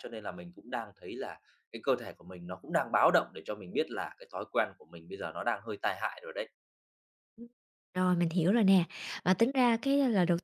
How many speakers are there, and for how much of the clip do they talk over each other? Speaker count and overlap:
two, no overlap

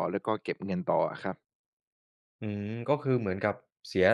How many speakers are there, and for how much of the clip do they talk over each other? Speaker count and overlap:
two, no overlap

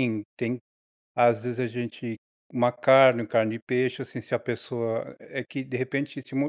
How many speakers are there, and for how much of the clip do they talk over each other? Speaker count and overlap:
one, no overlap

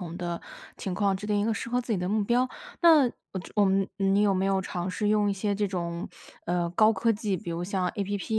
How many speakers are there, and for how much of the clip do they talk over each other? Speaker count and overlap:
one, no overlap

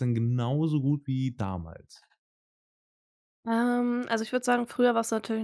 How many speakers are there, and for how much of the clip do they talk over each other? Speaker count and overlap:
two, no overlap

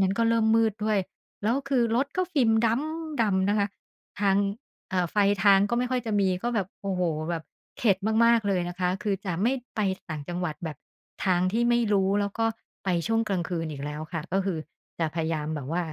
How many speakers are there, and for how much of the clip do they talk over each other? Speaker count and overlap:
one, no overlap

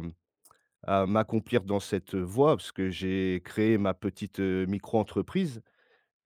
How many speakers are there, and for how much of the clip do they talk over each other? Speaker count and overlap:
one, no overlap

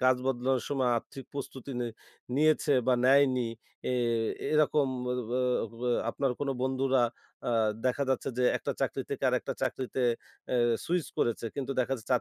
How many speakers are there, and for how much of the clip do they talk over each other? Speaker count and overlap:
one, no overlap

